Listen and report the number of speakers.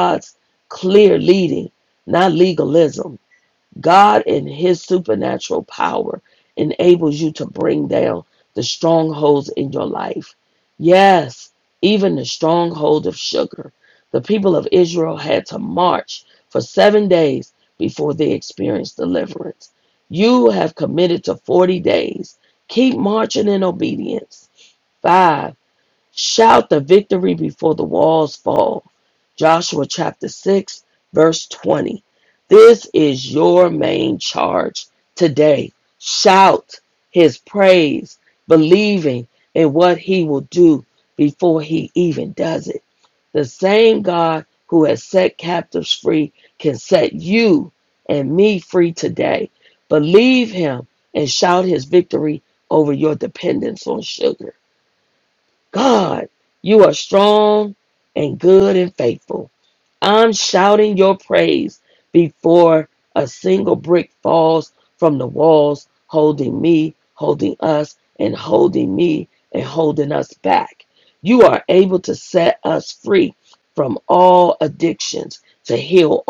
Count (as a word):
one